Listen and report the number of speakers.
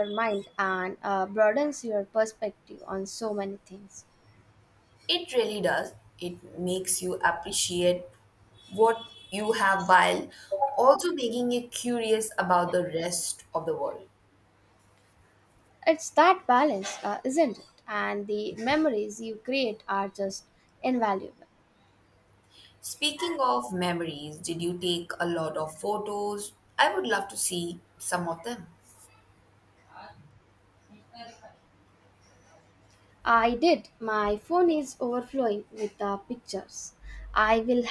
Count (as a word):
two